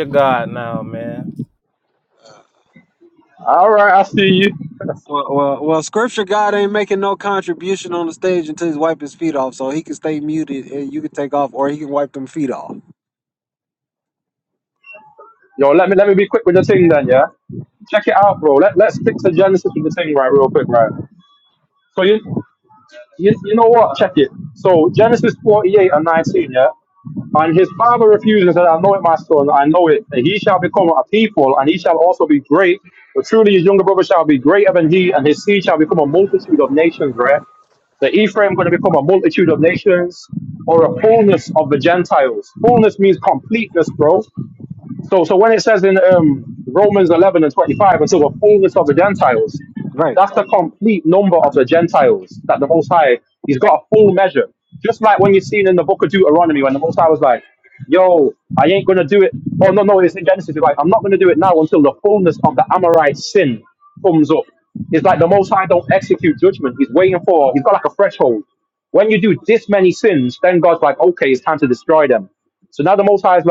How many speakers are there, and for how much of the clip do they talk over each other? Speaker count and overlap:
3, no overlap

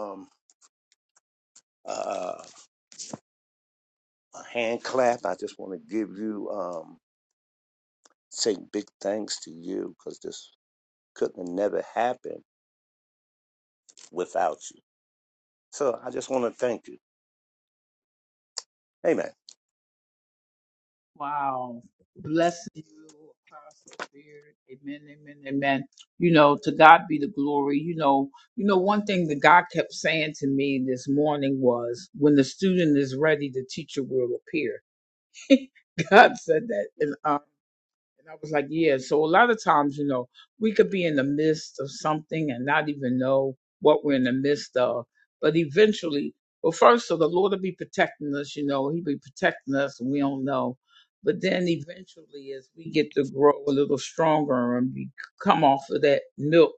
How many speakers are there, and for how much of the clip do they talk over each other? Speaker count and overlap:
2, no overlap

